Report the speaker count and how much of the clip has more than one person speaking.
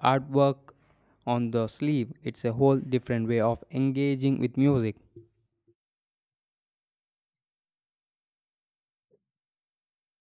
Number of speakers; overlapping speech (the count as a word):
one, no overlap